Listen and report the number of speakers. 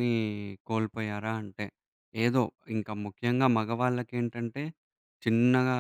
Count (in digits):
1